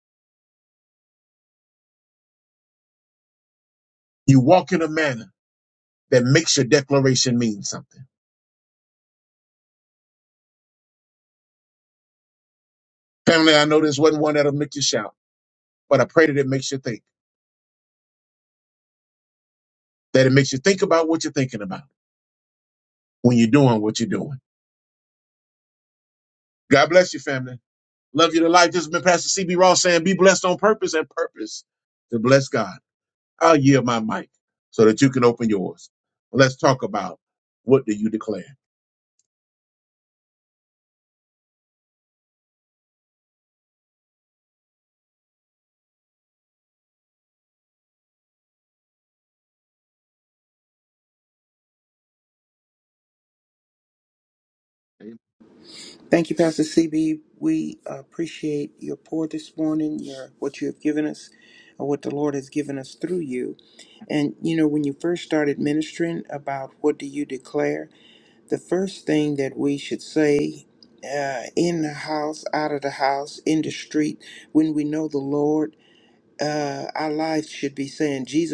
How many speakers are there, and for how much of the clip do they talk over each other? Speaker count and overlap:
two, no overlap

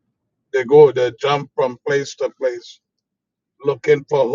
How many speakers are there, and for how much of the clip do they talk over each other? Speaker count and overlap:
one, no overlap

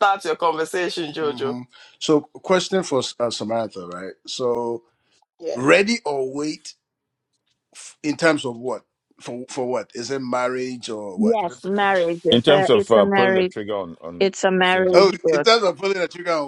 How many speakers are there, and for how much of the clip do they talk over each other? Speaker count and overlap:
four, about 16%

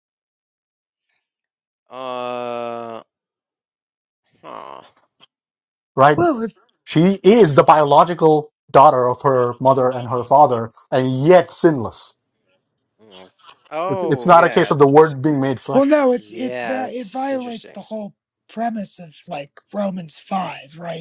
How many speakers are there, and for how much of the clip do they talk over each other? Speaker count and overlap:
three, about 15%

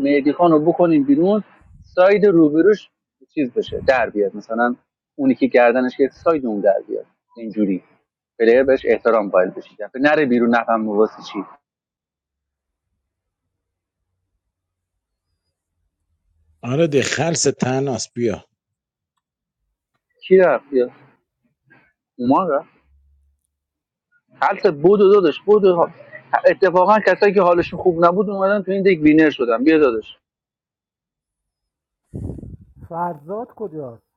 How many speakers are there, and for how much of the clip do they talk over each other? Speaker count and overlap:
three, no overlap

